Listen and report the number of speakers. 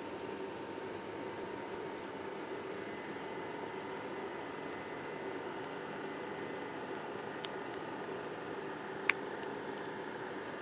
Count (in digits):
0